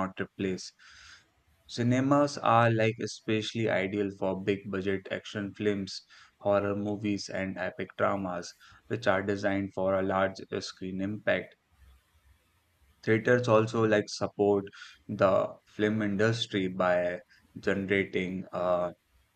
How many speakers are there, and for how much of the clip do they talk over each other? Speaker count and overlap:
one, no overlap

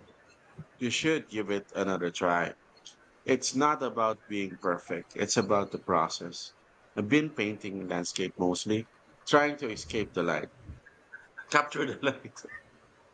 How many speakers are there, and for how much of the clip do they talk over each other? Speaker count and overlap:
one, no overlap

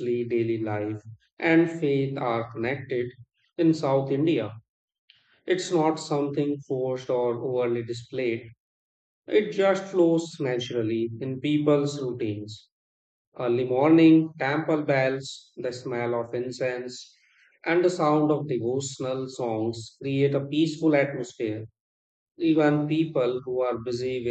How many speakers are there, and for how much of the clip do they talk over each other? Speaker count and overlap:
one, no overlap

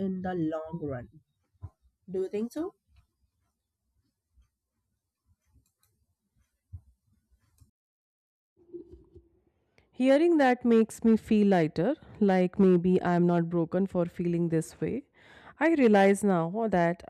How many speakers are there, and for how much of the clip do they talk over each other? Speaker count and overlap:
two, no overlap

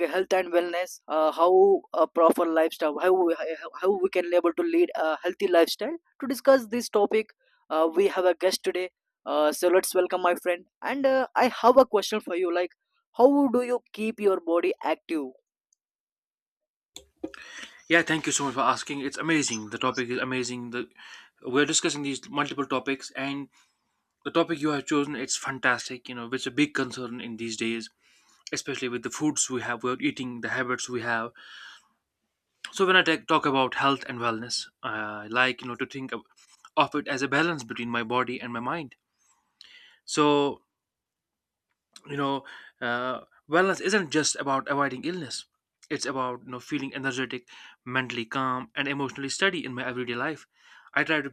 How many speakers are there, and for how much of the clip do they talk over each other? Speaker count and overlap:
two, no overlap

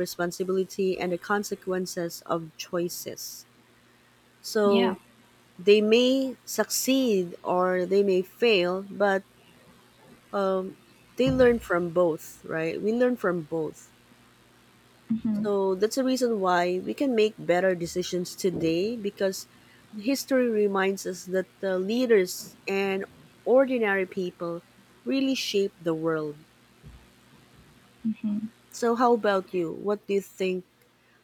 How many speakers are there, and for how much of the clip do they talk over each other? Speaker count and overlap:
two, about 1%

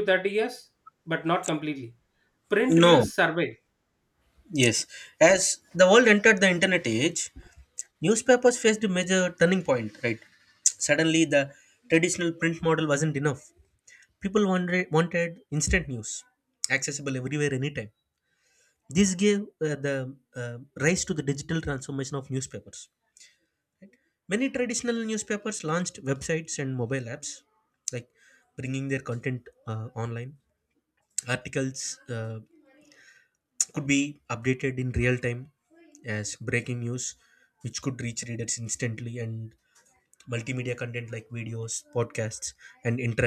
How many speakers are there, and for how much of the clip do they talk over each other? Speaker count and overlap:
two, about 1%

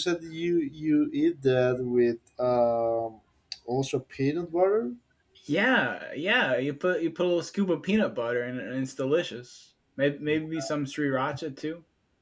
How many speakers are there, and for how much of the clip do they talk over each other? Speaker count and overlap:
two, no overlap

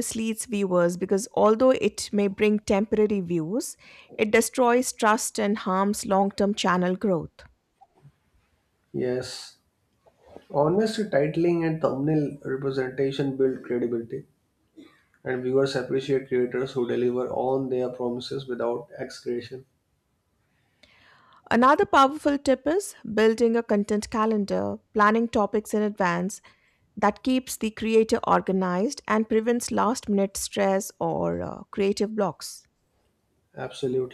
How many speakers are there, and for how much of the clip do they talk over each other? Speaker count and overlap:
two, no overlap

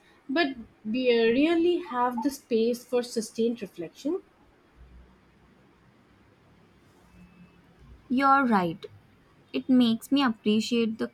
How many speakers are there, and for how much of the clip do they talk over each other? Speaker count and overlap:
two, no overlap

